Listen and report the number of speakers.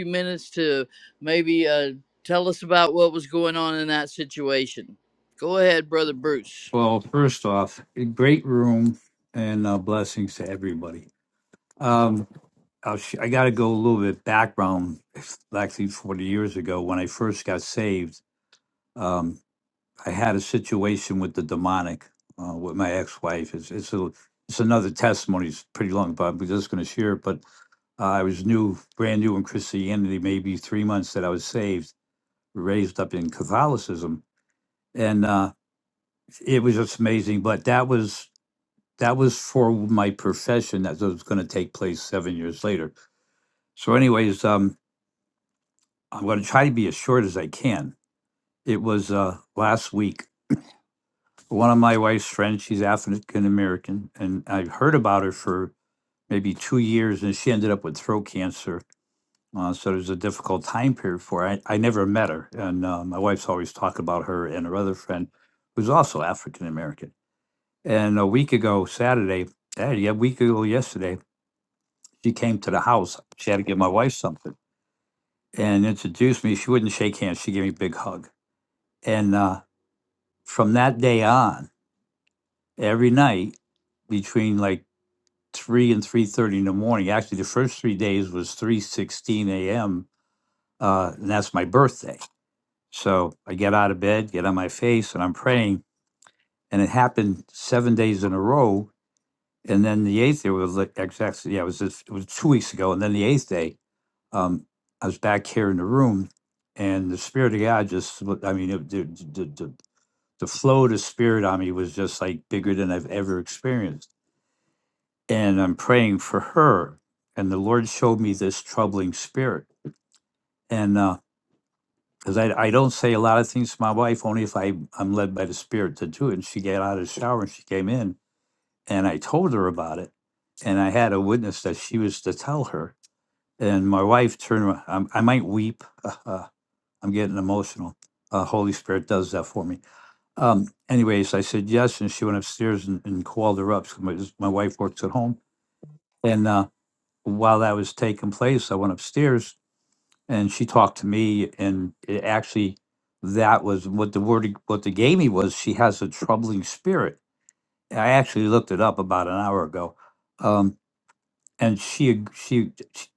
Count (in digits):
2